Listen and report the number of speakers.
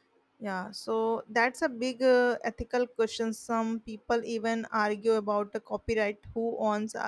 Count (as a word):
one